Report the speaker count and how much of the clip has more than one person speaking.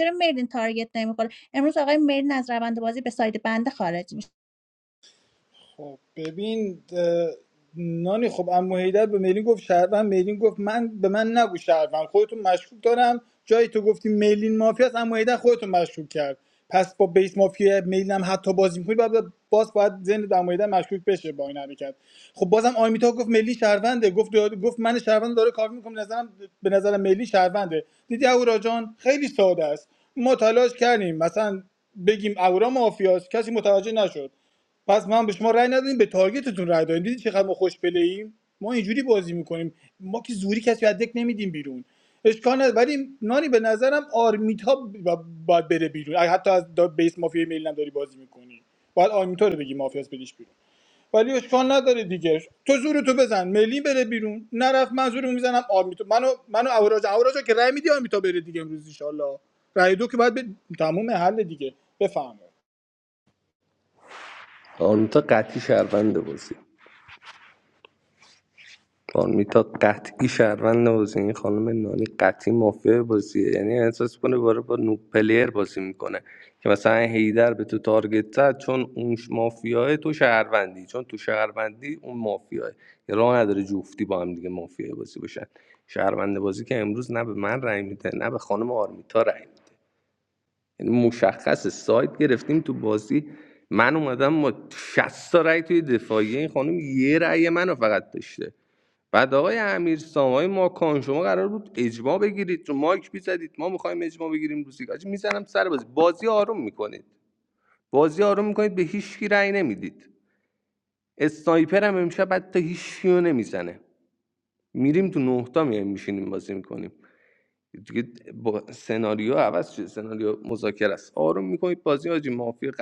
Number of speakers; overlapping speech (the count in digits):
3, no overlap